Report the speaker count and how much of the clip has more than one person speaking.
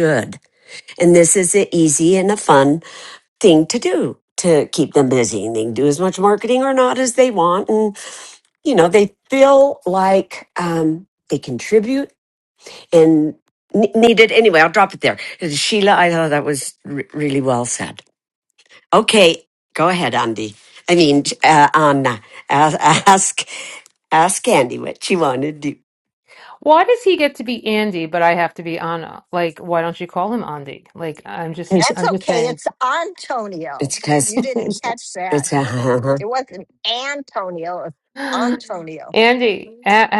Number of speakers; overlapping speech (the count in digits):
3, about 3%